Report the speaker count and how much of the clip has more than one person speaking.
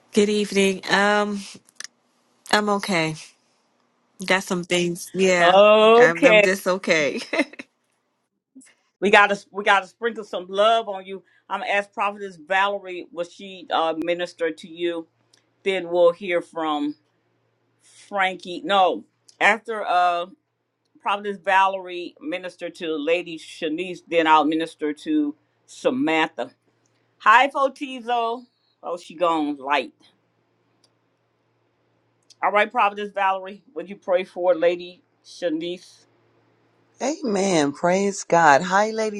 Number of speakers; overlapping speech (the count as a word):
three, about 2%